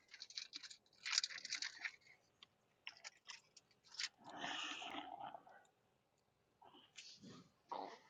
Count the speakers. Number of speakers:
0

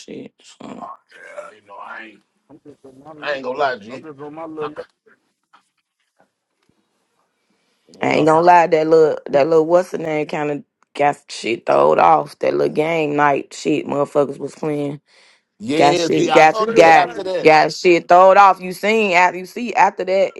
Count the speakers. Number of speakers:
3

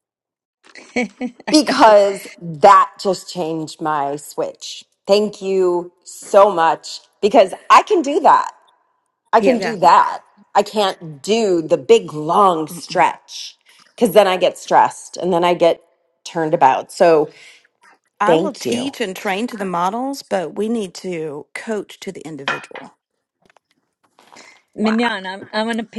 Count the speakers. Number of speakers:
3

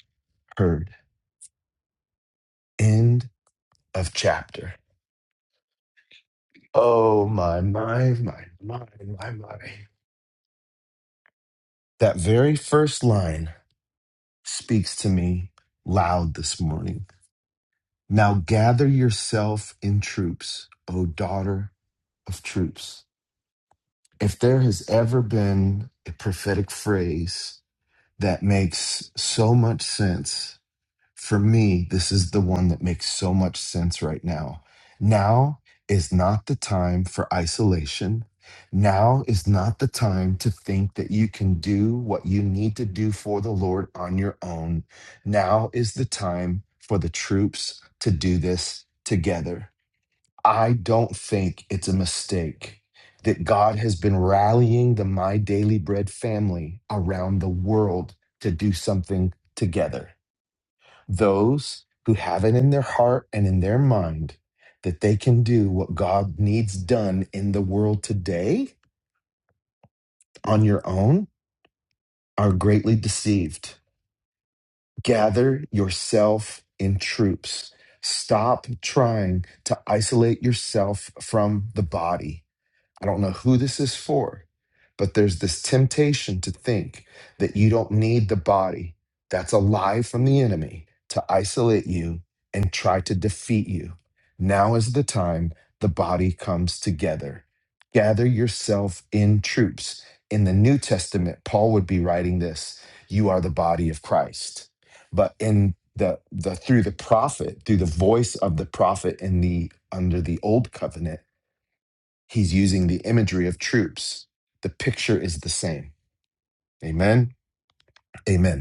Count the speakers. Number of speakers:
1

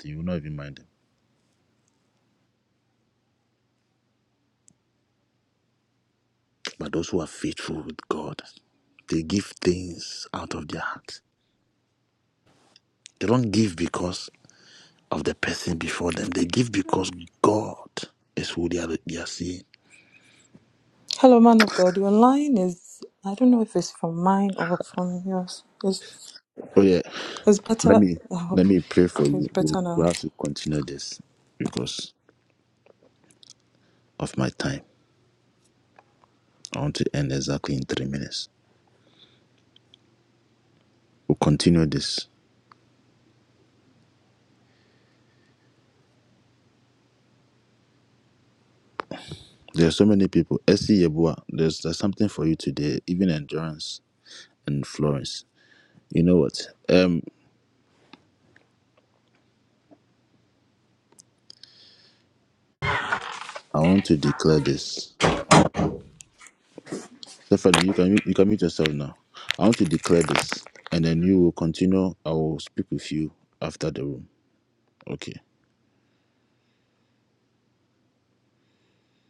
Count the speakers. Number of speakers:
2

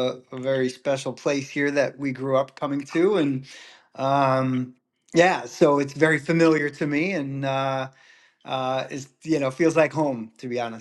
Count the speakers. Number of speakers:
1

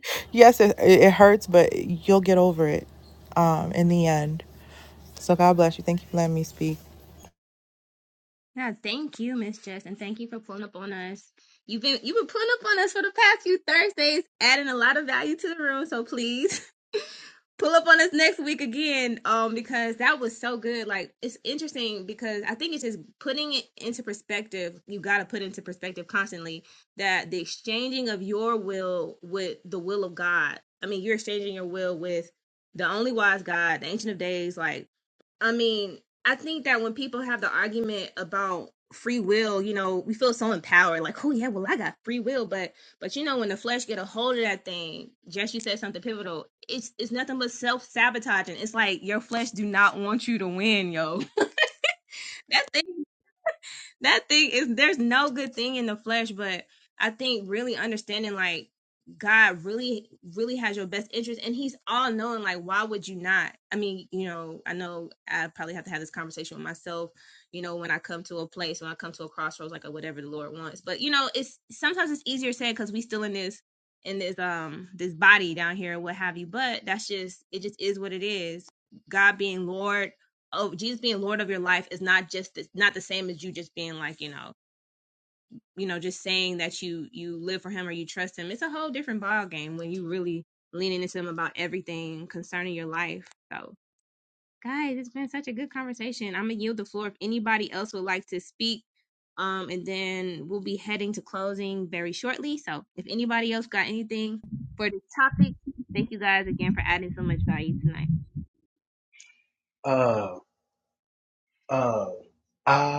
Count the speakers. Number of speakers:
3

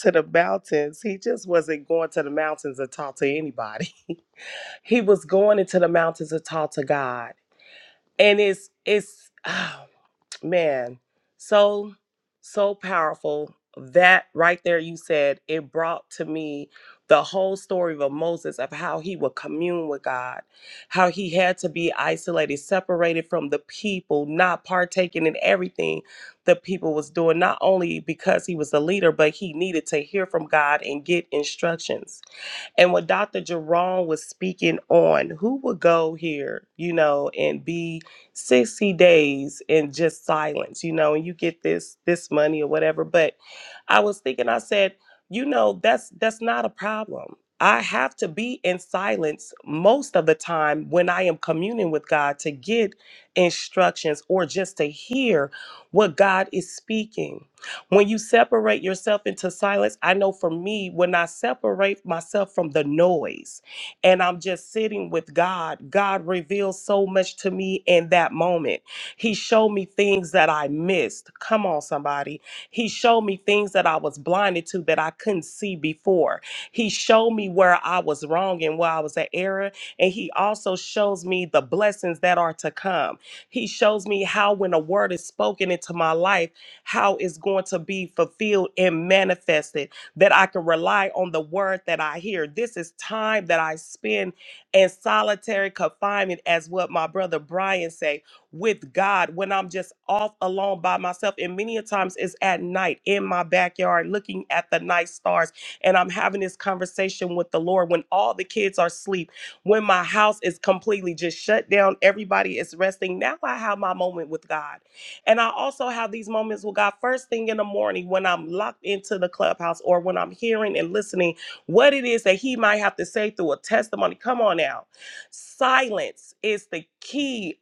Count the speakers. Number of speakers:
1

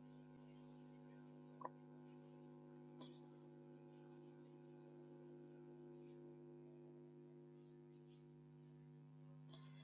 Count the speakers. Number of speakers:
0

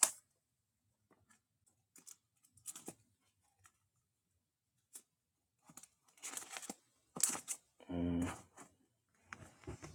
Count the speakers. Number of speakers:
0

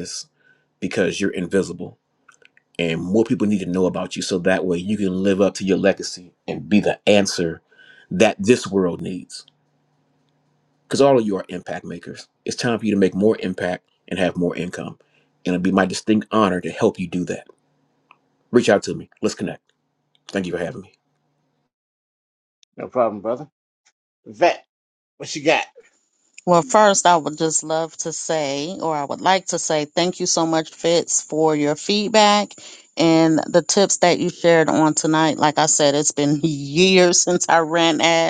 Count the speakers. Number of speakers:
3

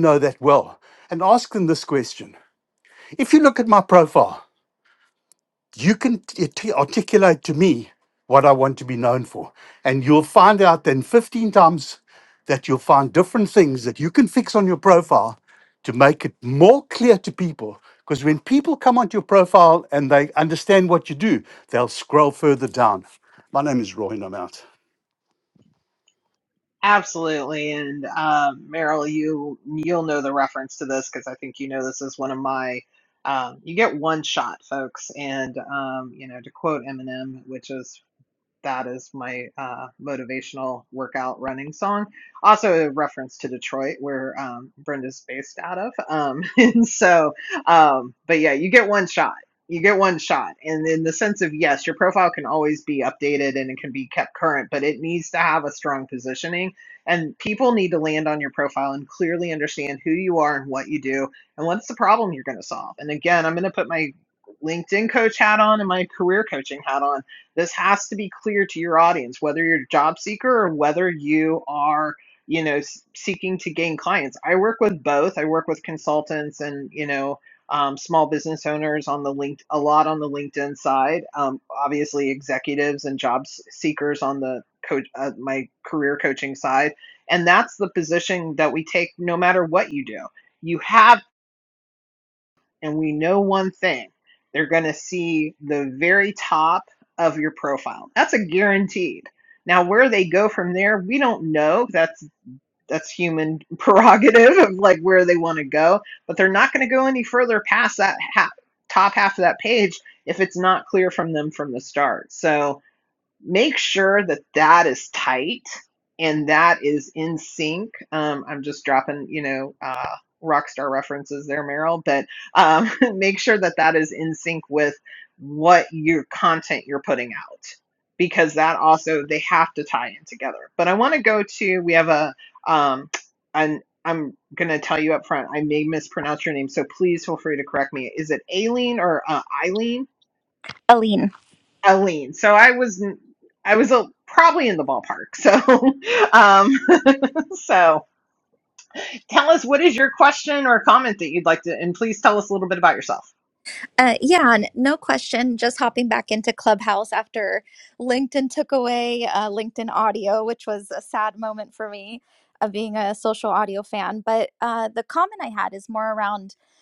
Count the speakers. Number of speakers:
3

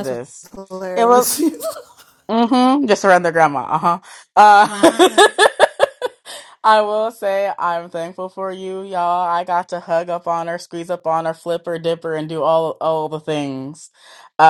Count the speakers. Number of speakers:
2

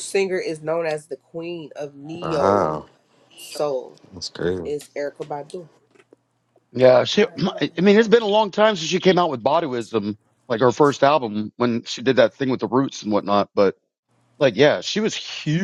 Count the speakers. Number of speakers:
3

